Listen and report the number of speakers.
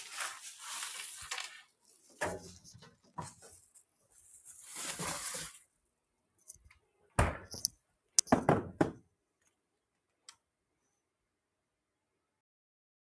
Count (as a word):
zero